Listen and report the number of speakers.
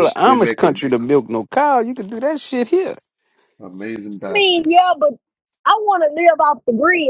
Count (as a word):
three